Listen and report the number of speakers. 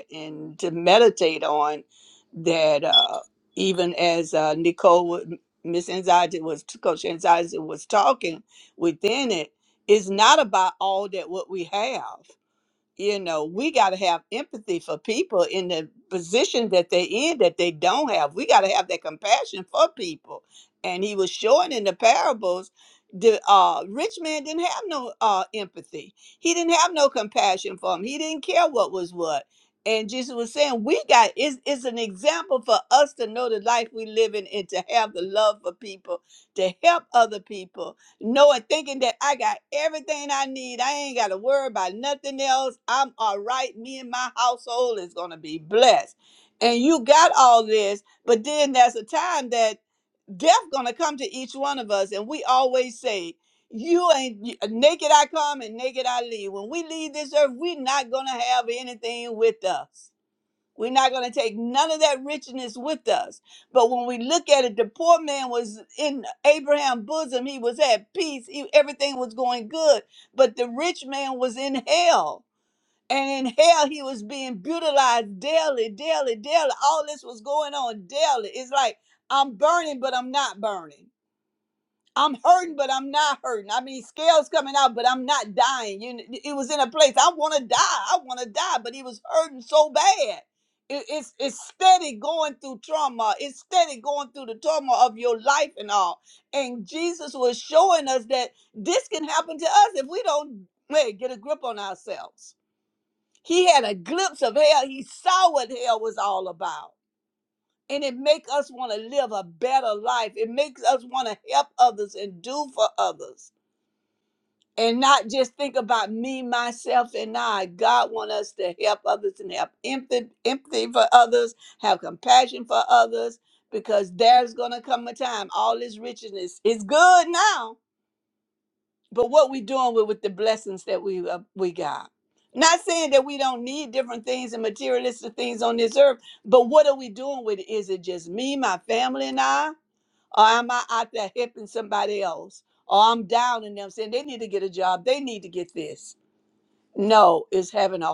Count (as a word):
one